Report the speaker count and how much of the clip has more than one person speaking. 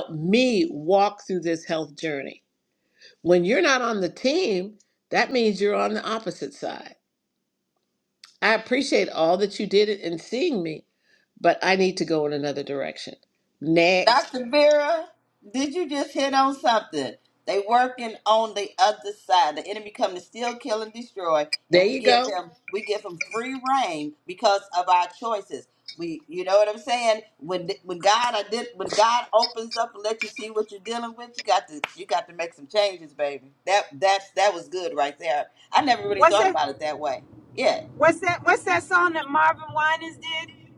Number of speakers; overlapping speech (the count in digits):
3, about 3%